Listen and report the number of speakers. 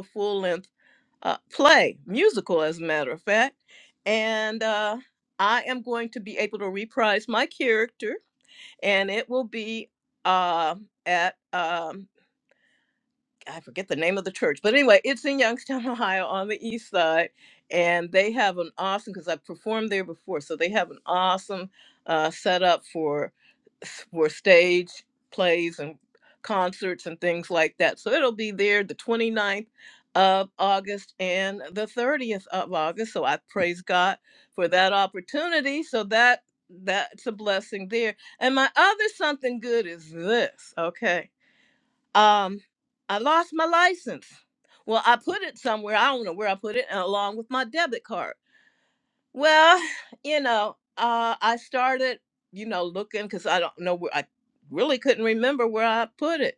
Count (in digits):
1